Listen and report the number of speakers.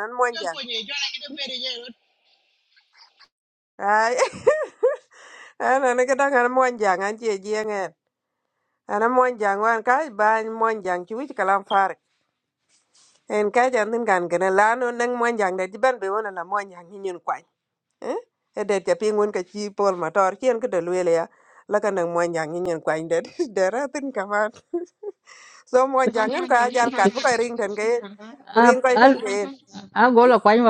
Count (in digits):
3